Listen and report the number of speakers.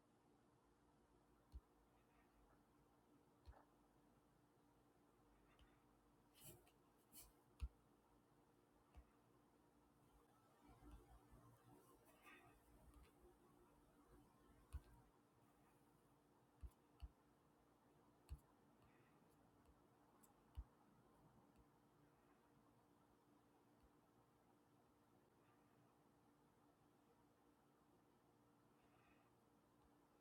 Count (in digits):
0